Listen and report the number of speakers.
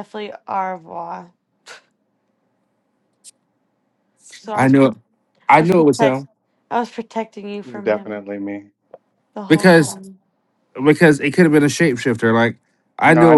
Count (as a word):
three